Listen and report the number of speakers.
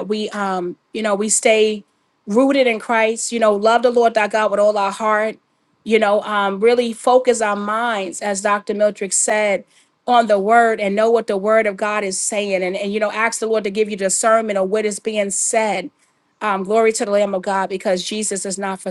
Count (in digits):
1